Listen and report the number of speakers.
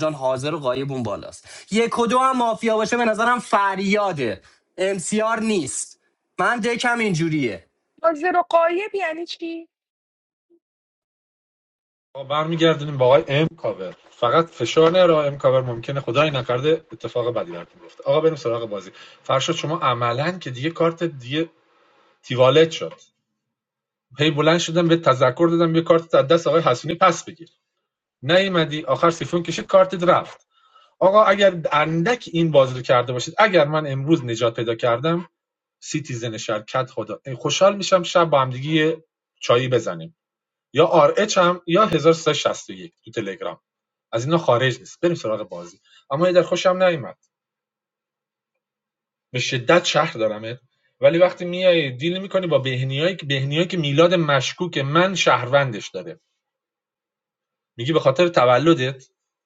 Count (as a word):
three